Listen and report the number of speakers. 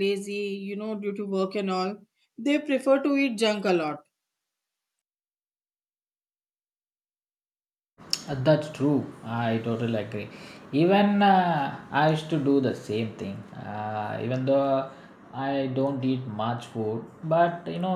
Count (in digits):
2